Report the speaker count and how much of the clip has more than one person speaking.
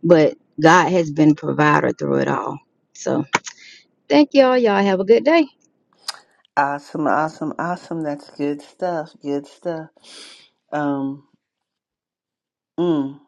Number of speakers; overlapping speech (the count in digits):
2, no overlap